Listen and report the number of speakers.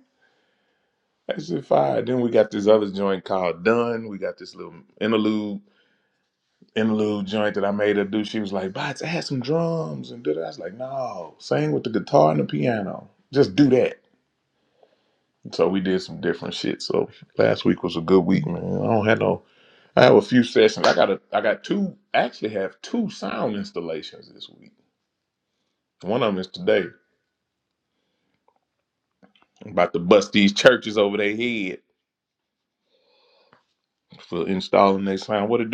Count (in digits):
1